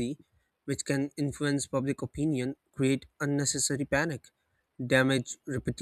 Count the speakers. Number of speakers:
one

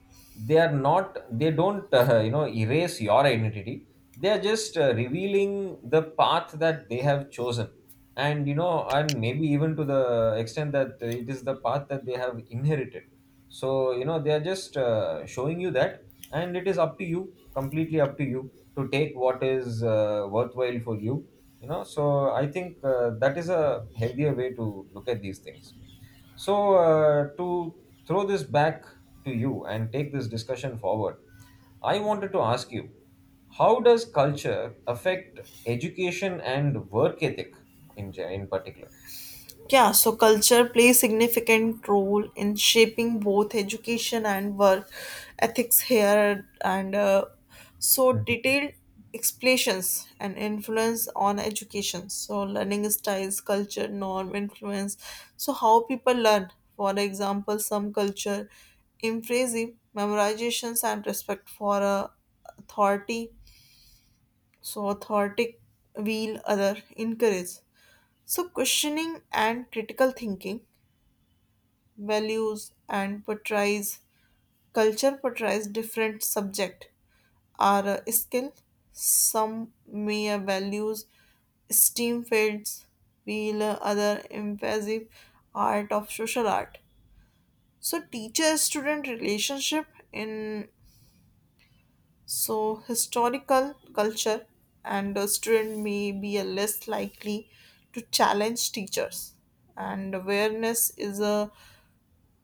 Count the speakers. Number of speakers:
two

